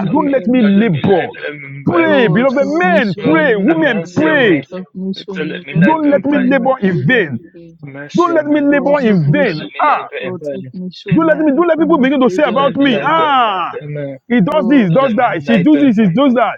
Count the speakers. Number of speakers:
3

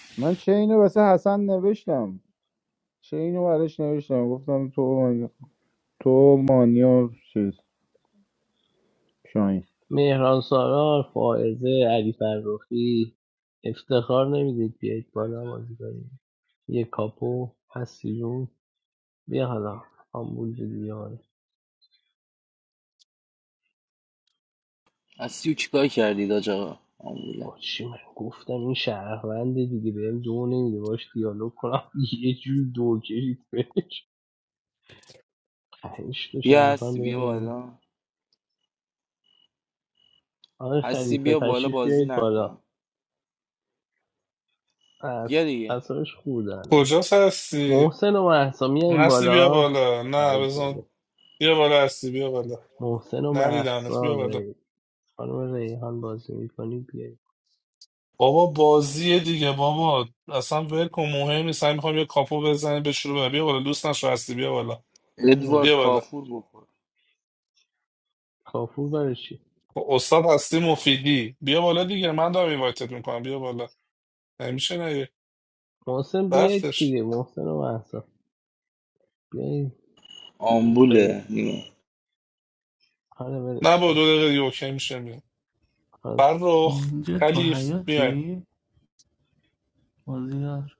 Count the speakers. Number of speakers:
5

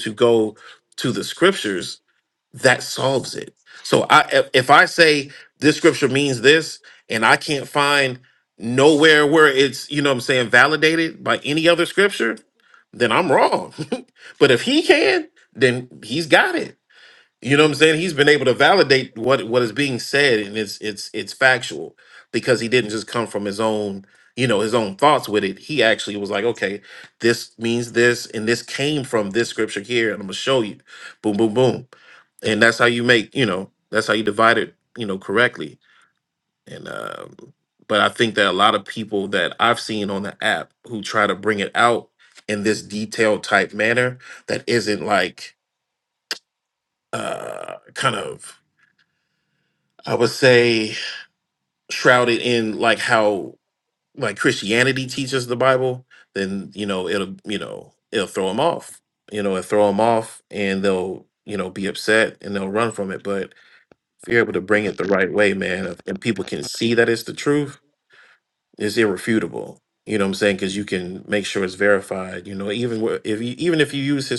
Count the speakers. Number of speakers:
1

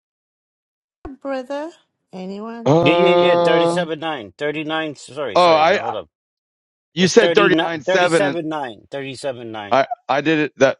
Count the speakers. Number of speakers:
3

